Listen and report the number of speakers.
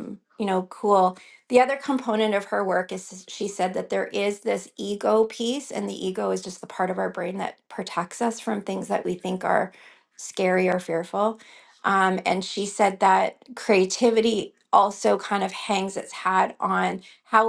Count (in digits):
1